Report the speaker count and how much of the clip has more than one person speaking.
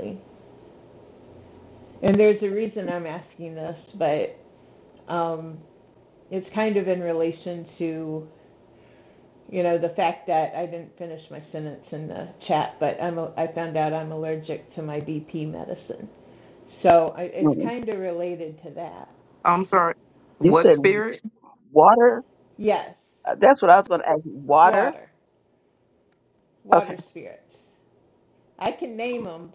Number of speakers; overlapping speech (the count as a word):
three, about 4%